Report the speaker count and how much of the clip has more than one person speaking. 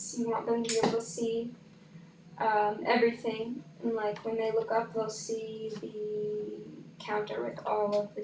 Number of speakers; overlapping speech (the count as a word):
one, no overlap